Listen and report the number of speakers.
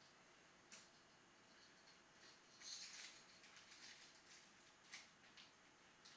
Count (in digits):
0